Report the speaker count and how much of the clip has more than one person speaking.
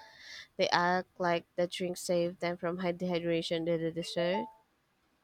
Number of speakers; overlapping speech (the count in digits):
1, no overlap